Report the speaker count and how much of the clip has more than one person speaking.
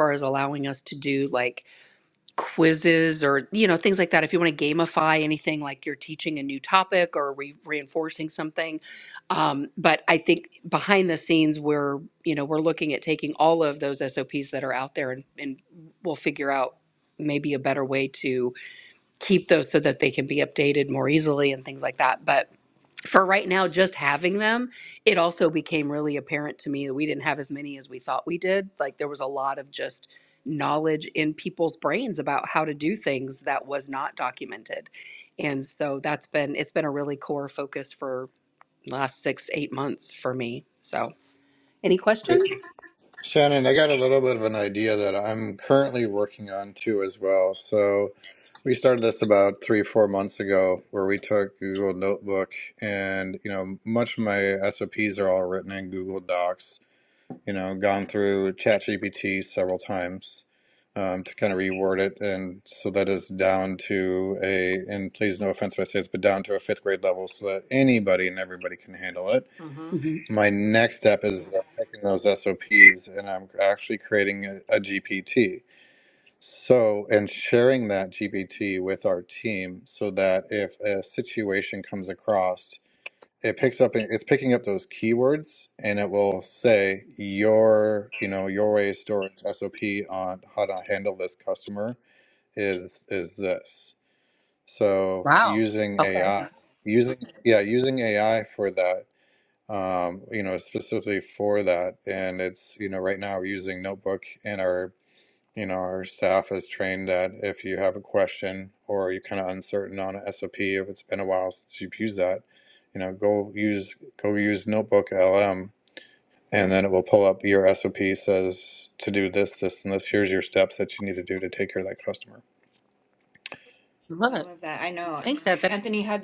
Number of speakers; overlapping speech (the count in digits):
3, about 1%